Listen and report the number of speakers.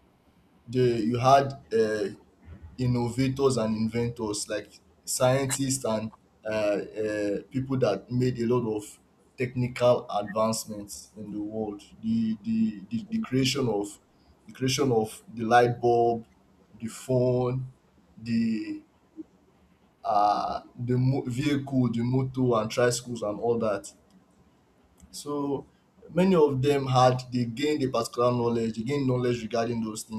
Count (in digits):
1